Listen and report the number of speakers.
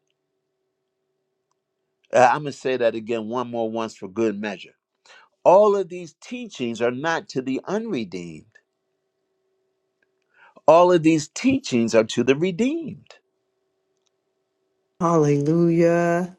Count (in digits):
2